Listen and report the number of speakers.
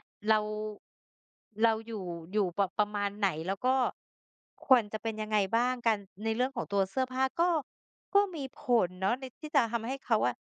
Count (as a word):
one